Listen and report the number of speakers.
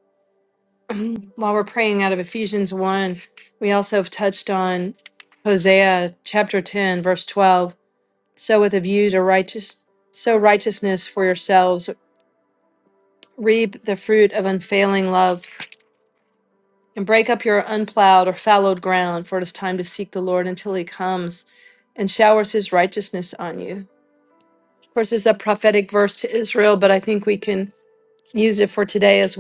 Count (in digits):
1